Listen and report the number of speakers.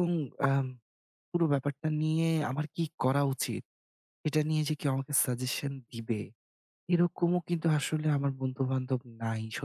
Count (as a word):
one